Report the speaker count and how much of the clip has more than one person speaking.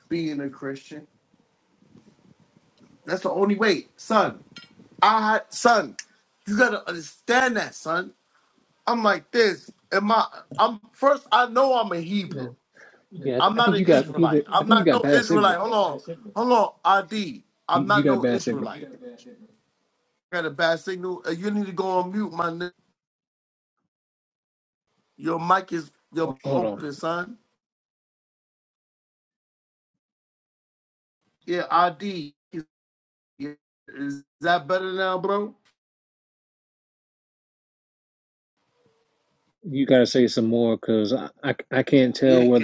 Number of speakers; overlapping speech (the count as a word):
two, about 9%